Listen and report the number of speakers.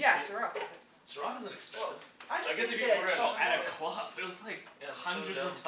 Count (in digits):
3